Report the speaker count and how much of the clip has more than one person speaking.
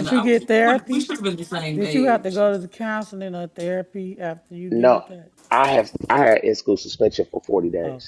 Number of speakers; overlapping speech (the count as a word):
three, about 27%